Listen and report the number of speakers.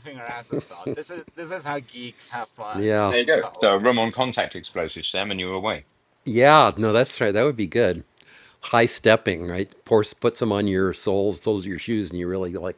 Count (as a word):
three